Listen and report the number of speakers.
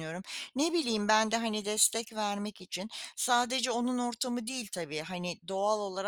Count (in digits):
1